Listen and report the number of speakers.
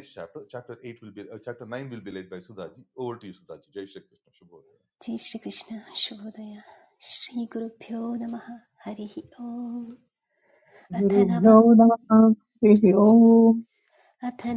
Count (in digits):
3